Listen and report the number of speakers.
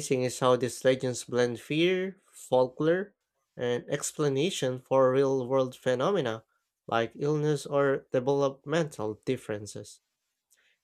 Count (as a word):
one